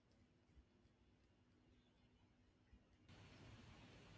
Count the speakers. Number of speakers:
0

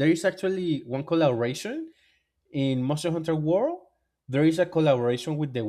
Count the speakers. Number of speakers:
1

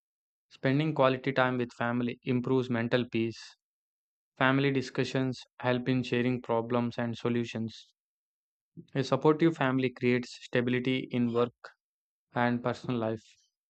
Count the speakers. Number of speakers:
1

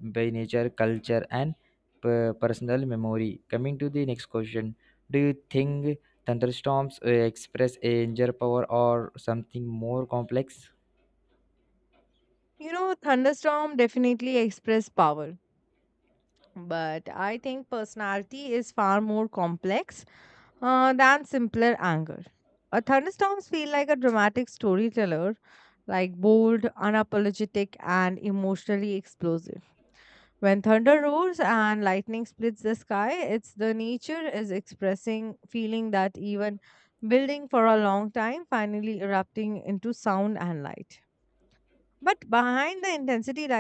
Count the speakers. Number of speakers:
2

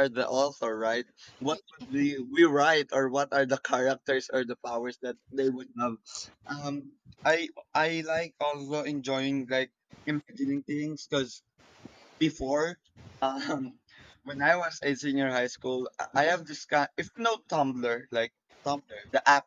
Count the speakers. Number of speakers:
1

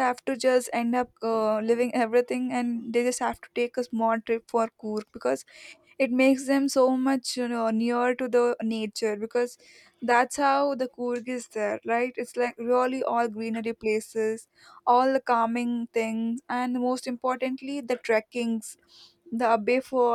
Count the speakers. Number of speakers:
1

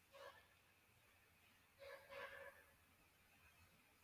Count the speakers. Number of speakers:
0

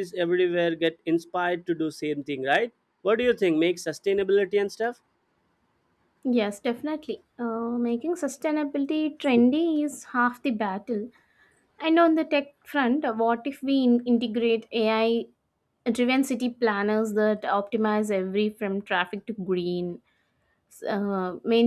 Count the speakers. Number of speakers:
2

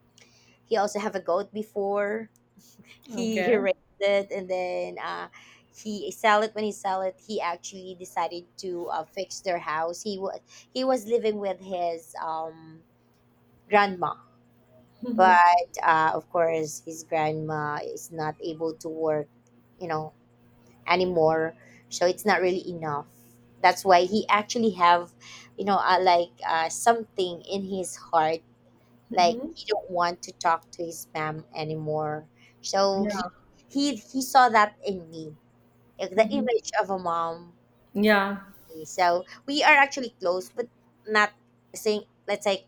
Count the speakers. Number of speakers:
2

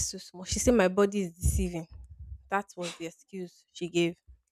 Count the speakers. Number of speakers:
1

